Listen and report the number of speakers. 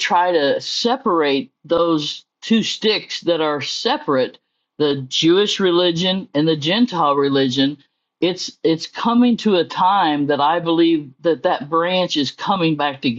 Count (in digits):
1